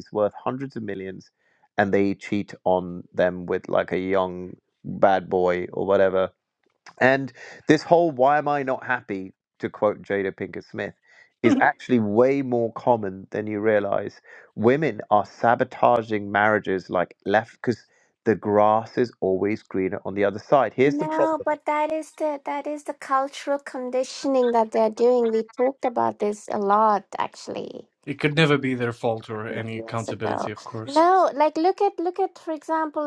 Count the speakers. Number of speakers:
3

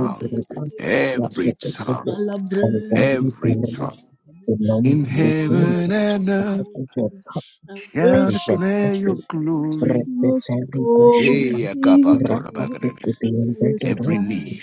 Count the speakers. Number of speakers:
3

